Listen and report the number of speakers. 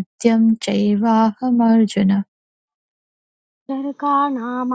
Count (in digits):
2